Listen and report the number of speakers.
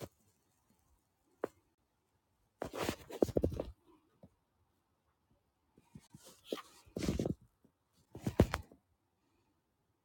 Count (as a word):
zero